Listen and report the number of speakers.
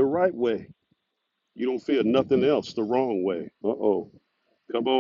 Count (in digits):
1